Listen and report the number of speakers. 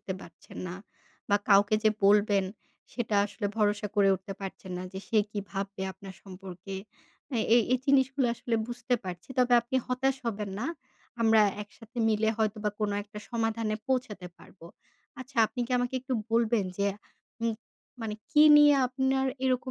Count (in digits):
1